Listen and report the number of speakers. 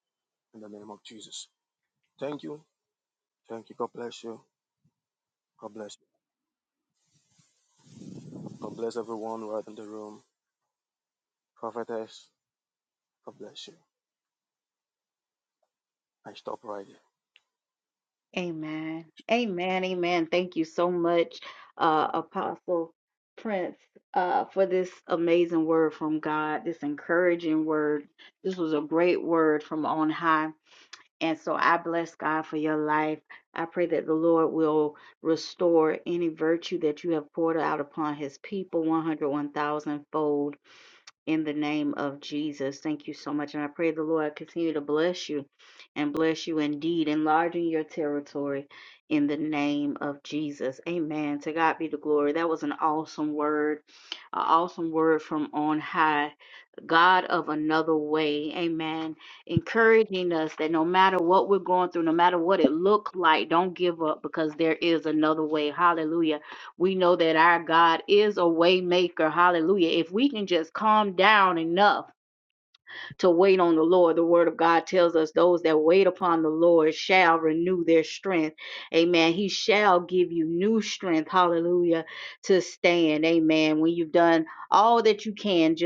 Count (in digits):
2